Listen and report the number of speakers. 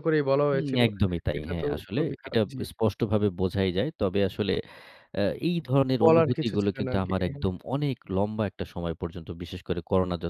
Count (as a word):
two